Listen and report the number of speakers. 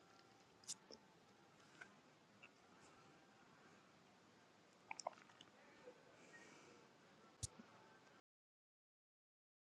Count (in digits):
0